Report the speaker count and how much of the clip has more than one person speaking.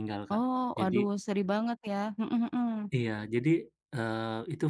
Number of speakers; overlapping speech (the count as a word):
two, about 9%